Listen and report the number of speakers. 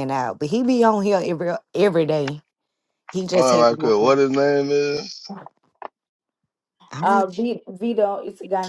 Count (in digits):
3